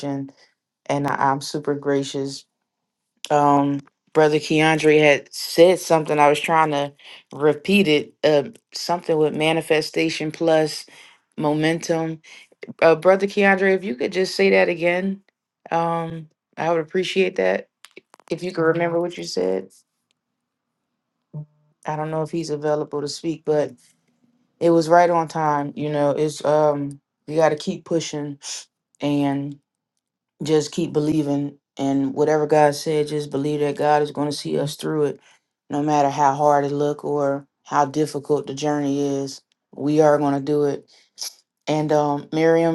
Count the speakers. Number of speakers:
1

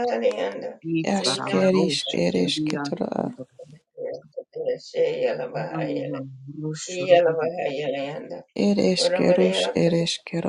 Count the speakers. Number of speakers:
3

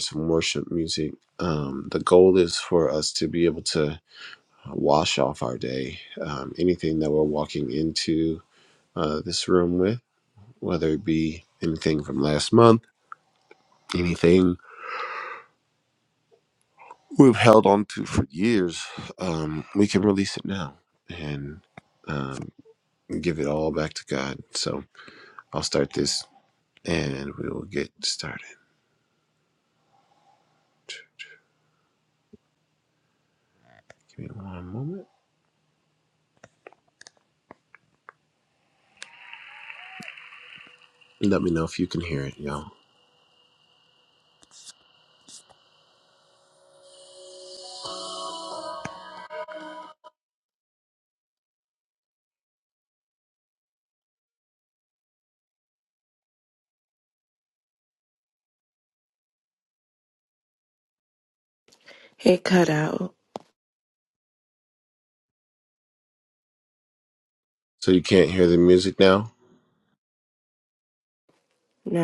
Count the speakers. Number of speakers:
2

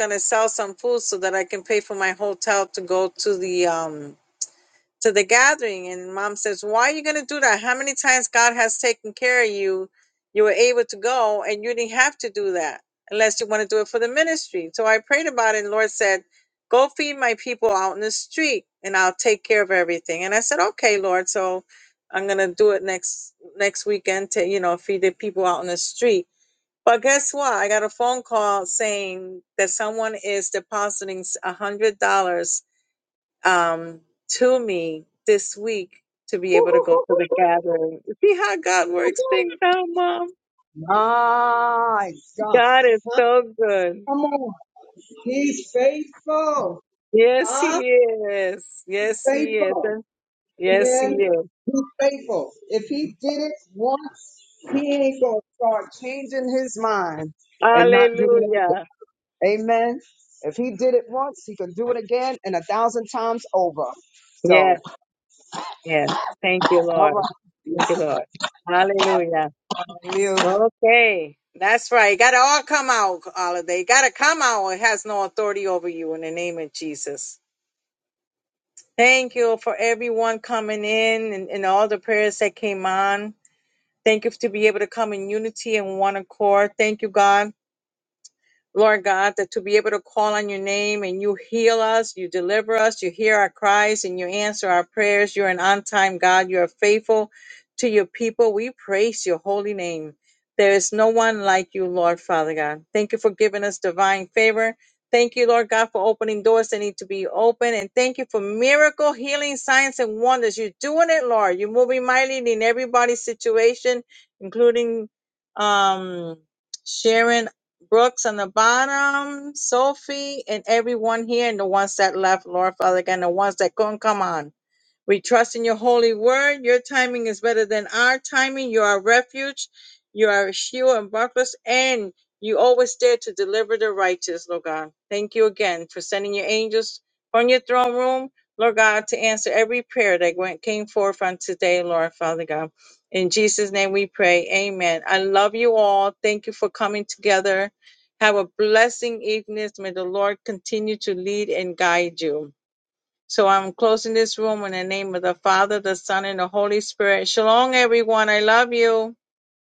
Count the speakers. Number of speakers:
2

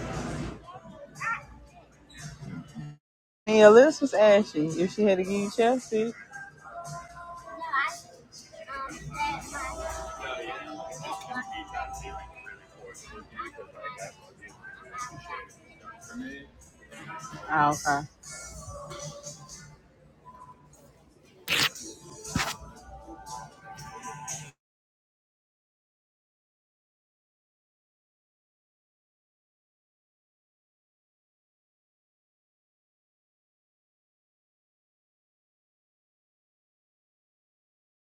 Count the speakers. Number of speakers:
1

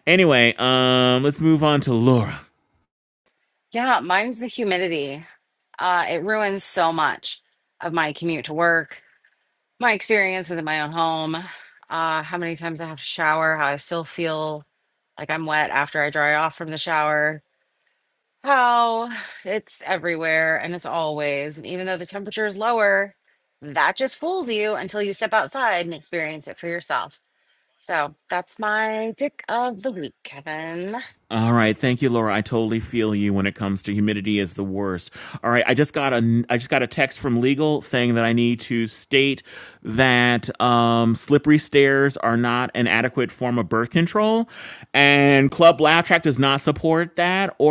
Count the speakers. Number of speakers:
2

